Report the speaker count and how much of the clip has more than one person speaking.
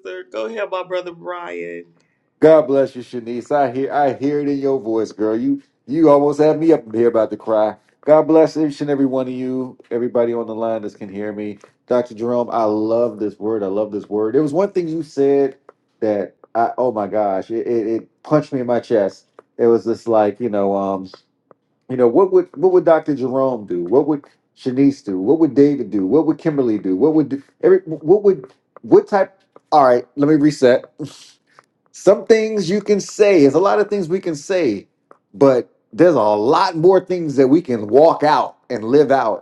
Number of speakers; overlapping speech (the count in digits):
2, no overlap